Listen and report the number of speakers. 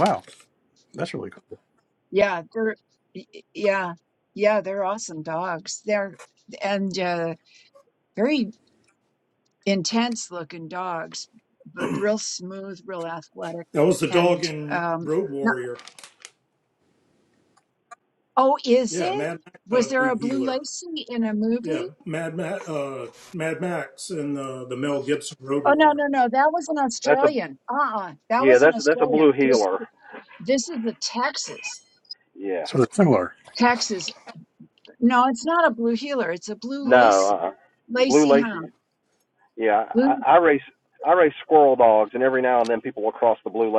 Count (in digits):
4